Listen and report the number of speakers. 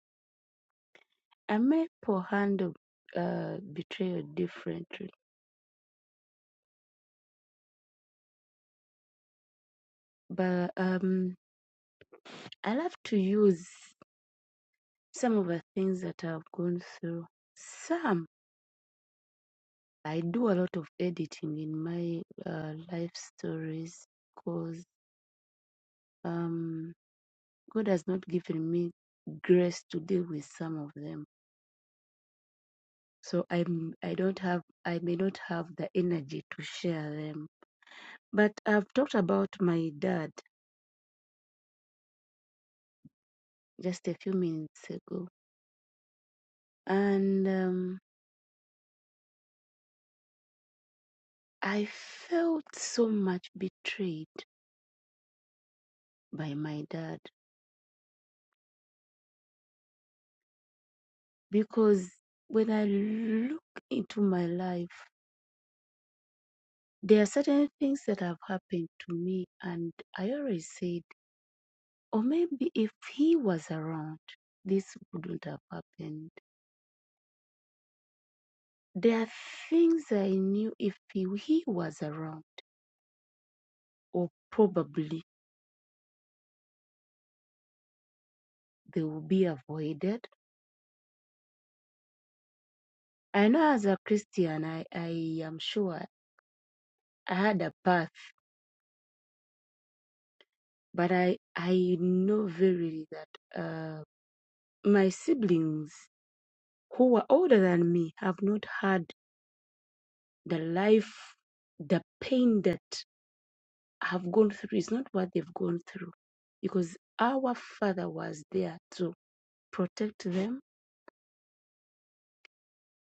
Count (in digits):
1